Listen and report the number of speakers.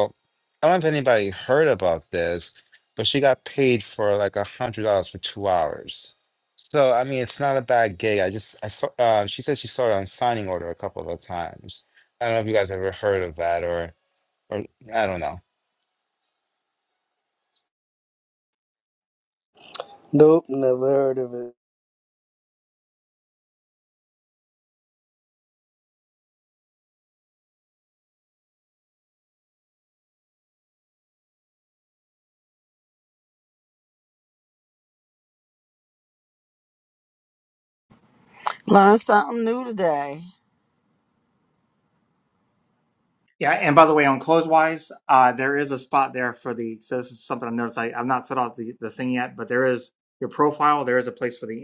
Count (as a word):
four